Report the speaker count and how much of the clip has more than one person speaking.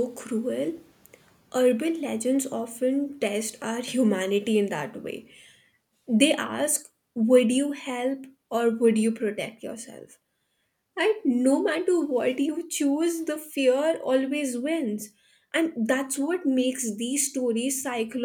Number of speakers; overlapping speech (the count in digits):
1, no overlap